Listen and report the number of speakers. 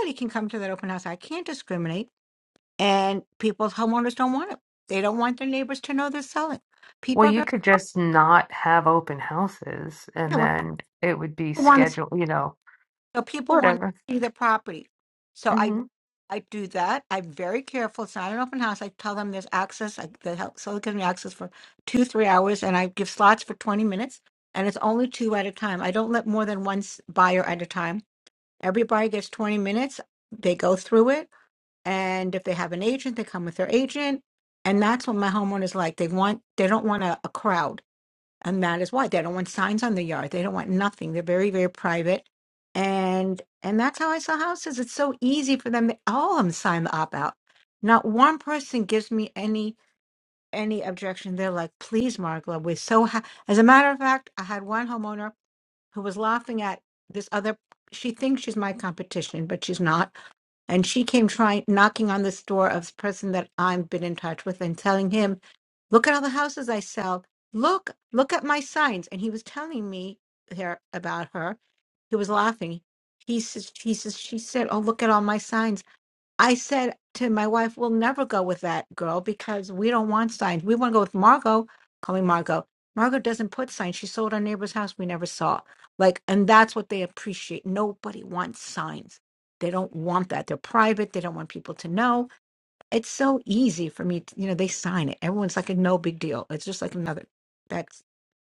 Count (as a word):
two